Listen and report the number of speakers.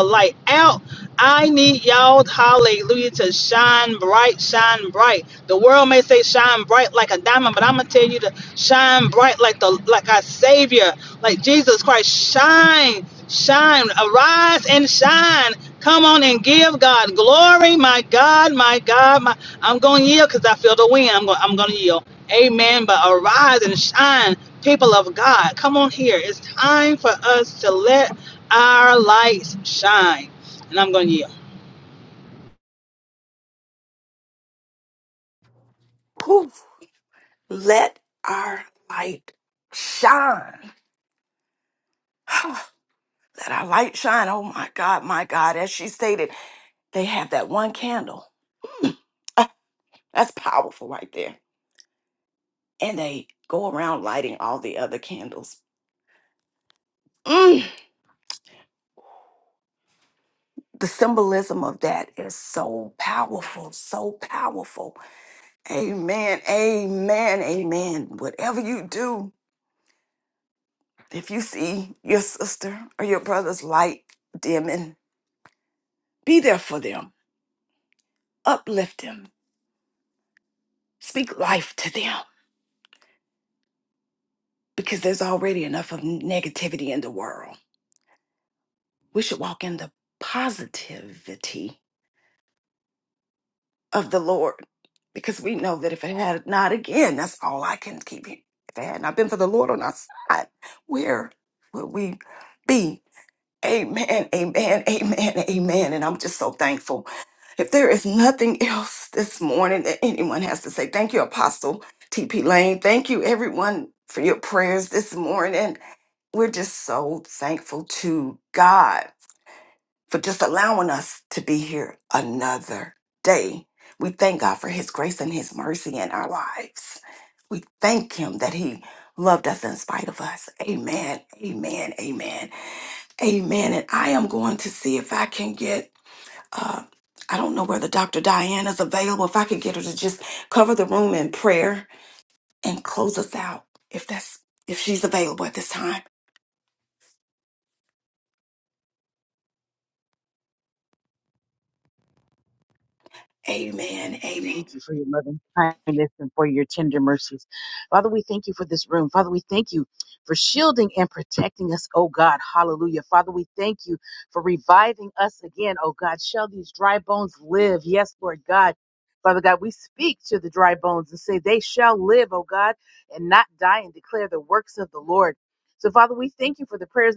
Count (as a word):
three